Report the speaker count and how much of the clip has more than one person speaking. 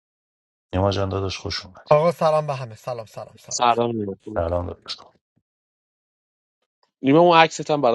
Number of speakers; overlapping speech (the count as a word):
three, about 3%